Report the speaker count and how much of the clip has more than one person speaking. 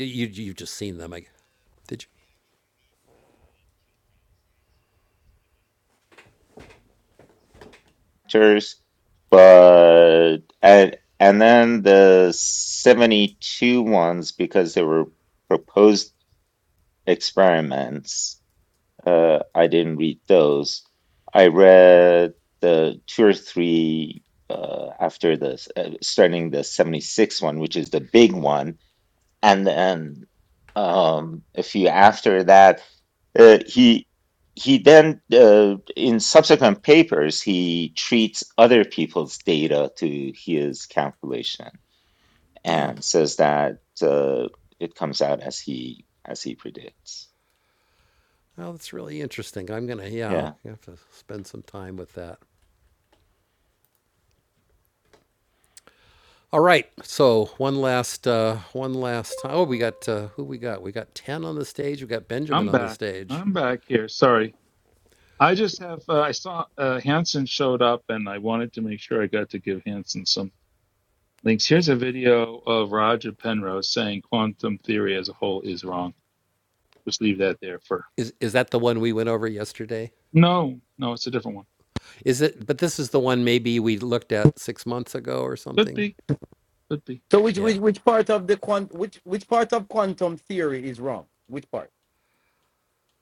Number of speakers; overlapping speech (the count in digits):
4, about 2%